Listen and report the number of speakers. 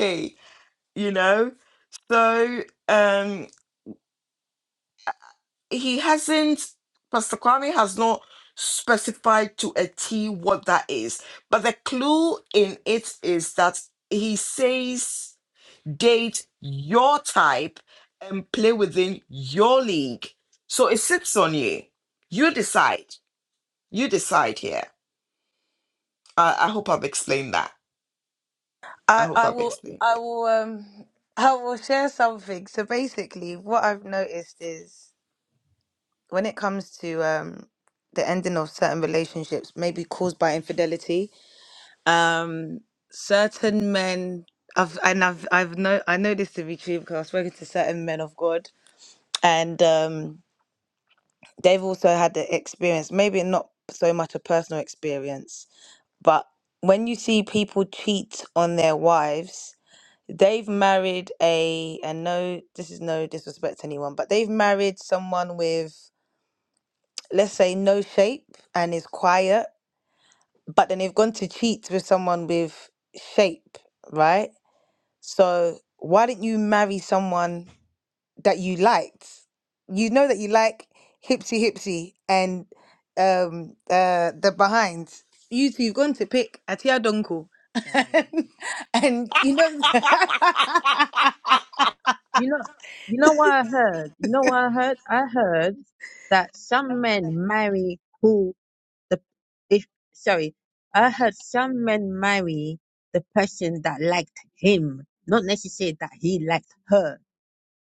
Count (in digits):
3